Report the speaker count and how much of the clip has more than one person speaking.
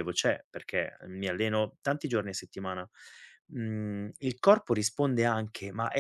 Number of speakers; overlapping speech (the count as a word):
one, no overlap